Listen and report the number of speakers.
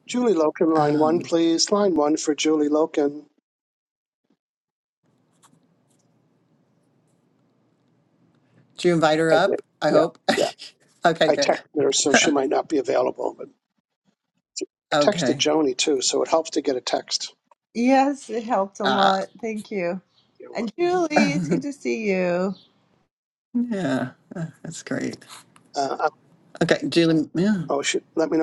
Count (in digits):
3